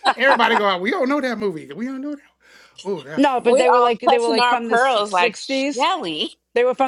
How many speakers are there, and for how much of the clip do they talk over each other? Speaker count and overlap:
three, about 33%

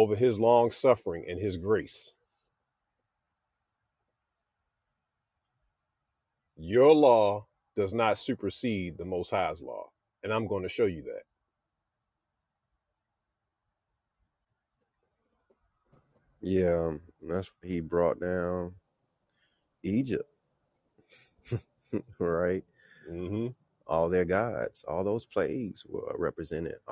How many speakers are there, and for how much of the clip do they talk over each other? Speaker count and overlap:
two, no overlap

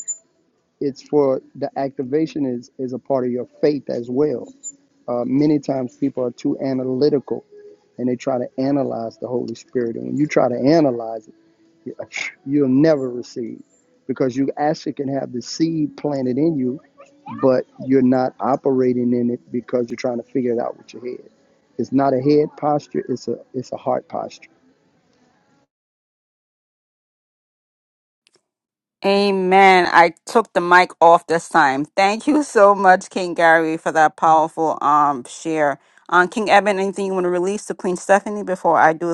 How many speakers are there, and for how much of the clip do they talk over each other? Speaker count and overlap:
two, no overlap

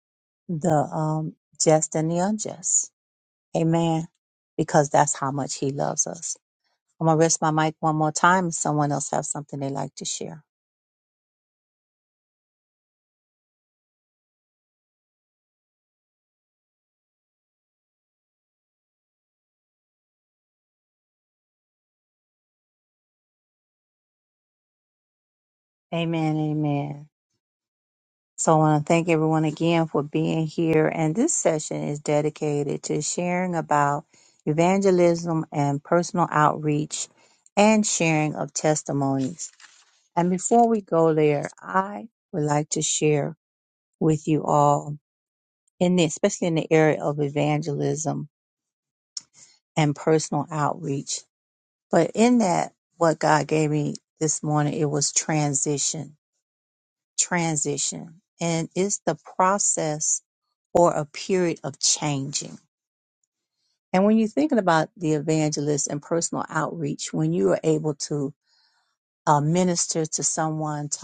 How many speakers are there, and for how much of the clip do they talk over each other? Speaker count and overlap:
one, no overlap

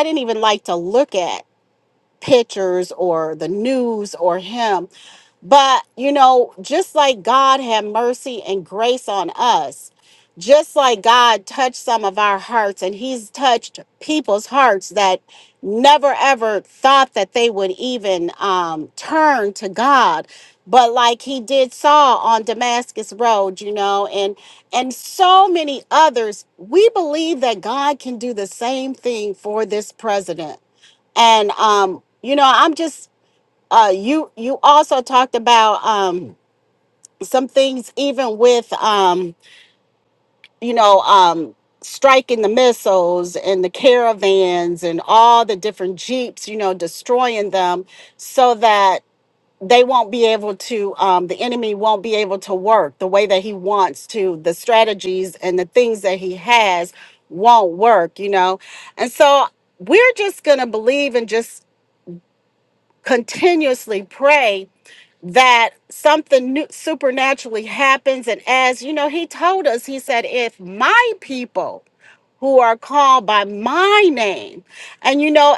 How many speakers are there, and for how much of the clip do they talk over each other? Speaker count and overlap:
one, no overlap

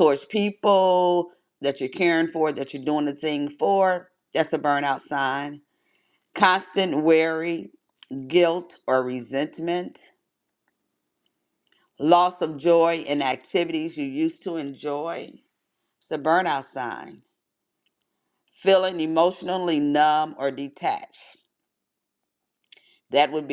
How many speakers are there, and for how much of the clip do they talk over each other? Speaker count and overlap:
one, no overlap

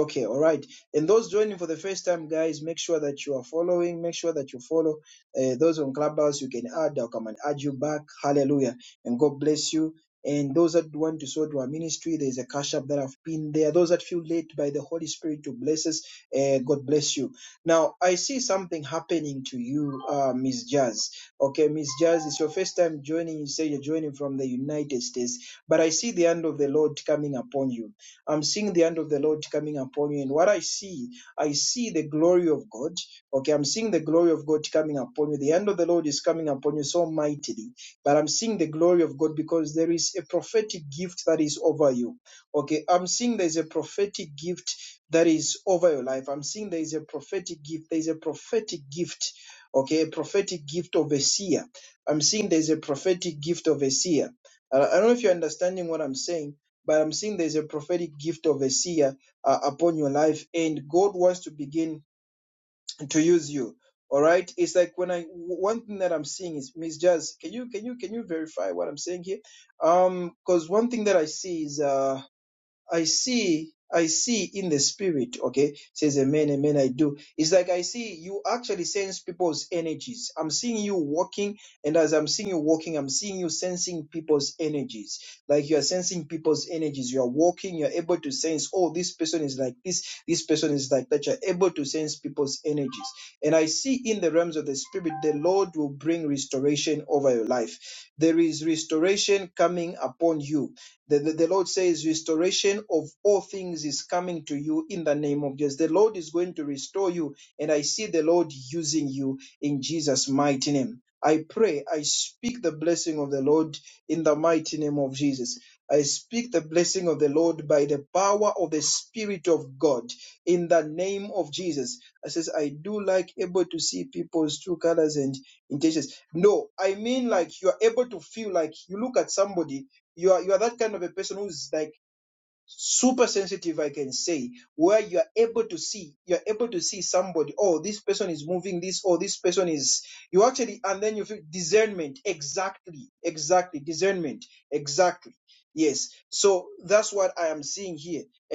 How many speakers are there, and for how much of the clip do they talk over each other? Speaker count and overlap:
one, no overlap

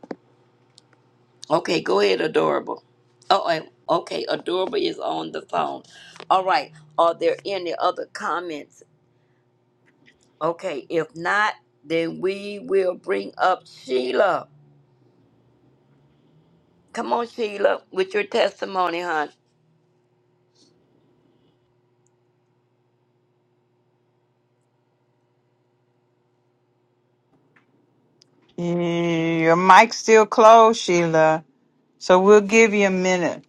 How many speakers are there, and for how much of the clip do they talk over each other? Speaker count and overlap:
two, no overlap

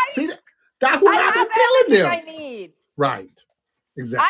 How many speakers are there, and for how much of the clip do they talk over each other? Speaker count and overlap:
two, about 34%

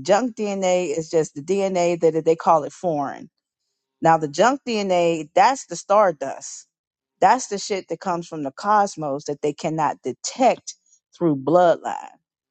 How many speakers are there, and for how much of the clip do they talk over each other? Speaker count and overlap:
one, no overlap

